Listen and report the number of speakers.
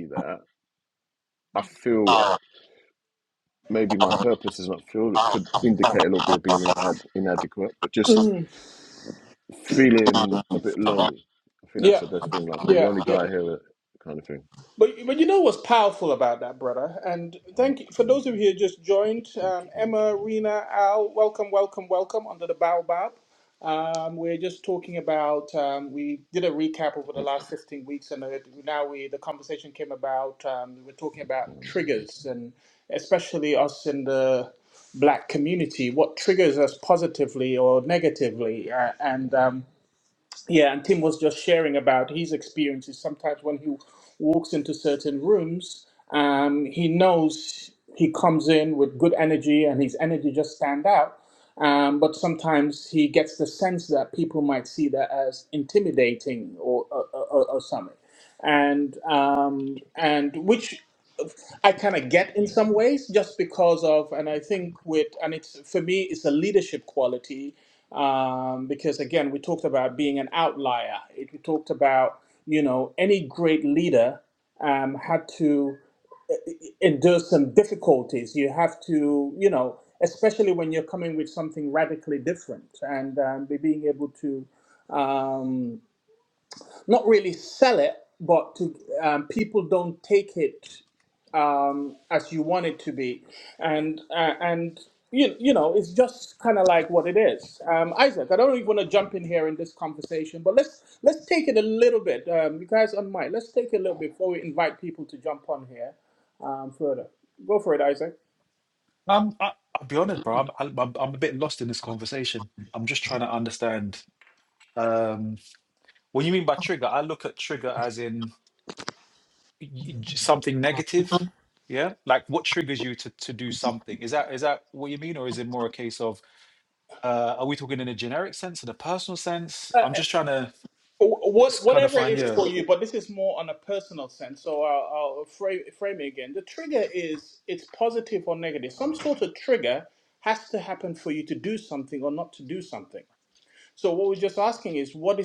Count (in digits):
3